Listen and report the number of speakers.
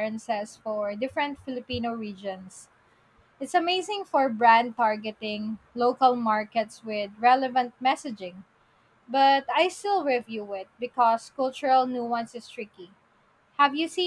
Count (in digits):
1